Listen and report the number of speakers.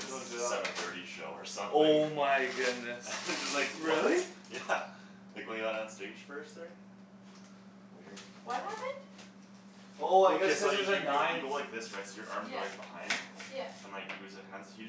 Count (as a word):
three